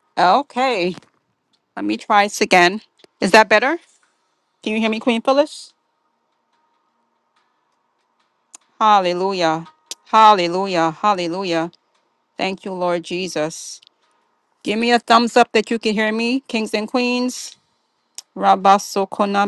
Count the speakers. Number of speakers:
1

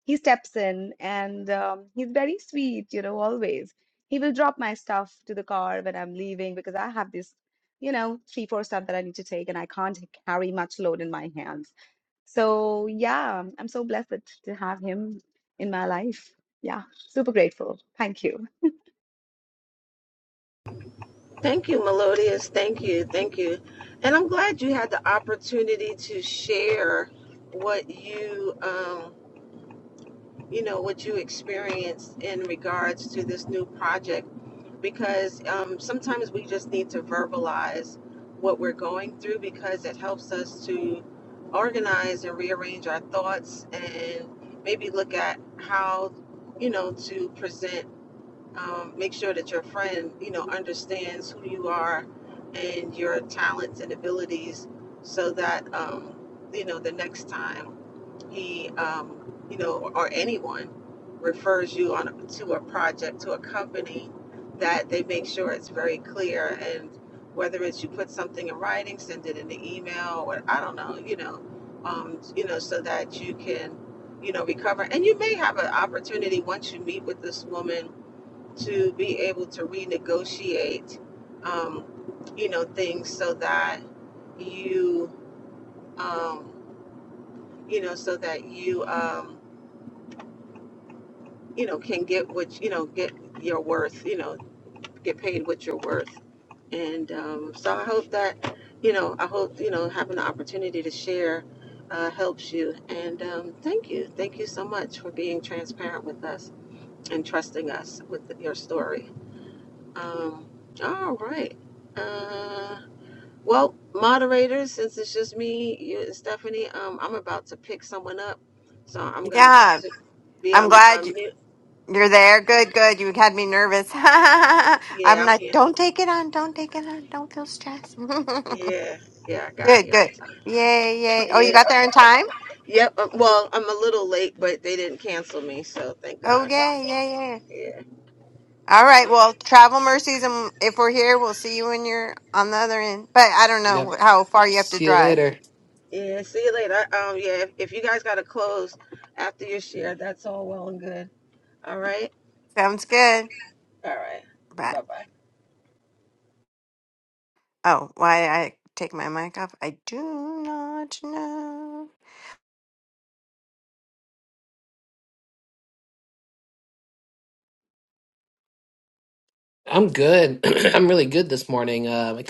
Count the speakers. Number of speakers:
4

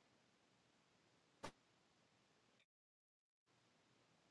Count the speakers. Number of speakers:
0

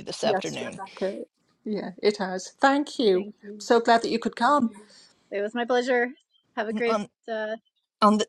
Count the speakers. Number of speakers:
3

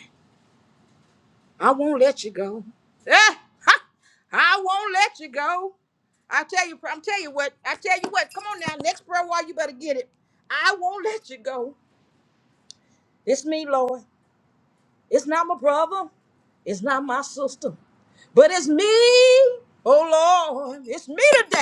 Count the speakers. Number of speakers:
1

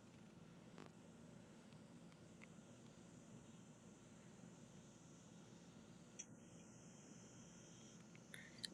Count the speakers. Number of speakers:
0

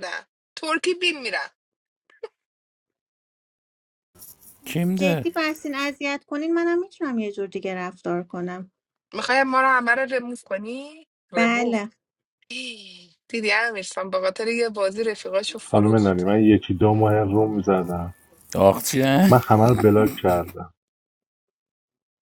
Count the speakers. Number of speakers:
4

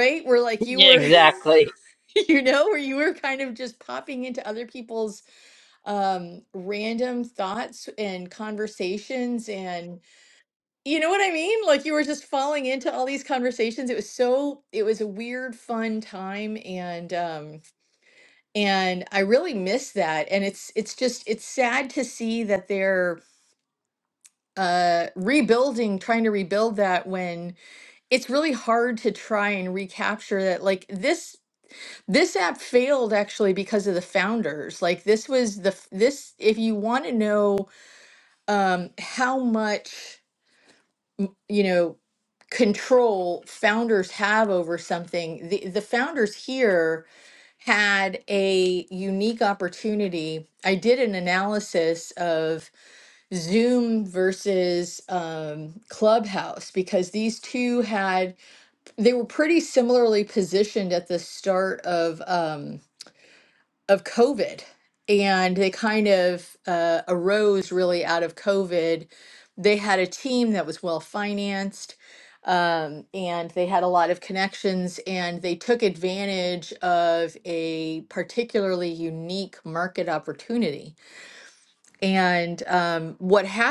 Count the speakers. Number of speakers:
2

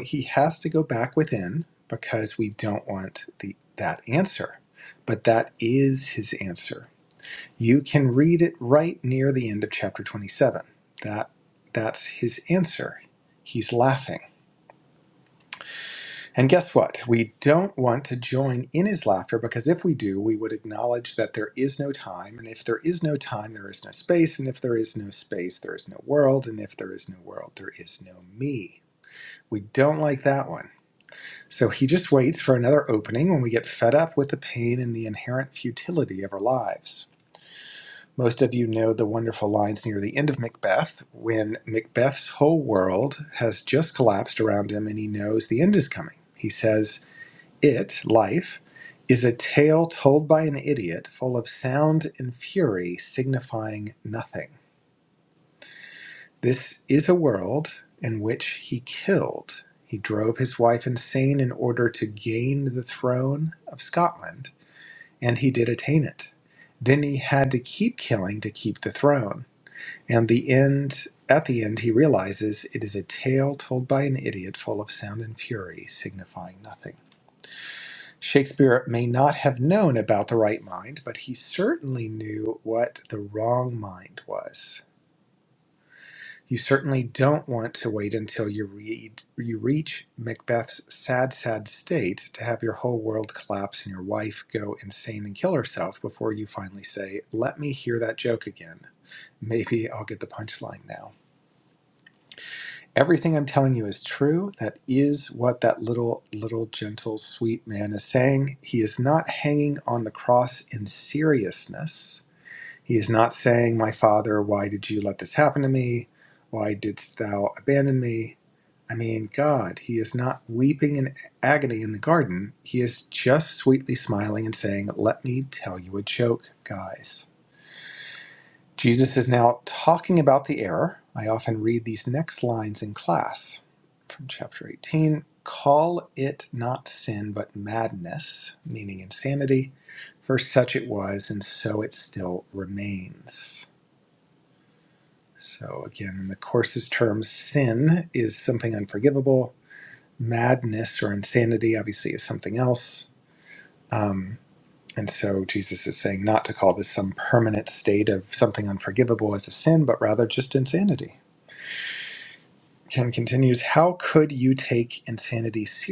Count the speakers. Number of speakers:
1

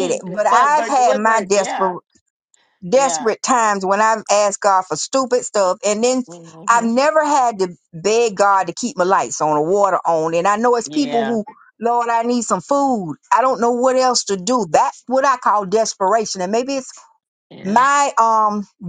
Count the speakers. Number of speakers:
2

